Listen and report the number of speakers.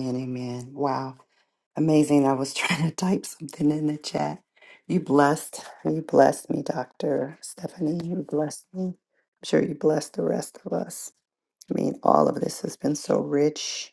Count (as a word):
one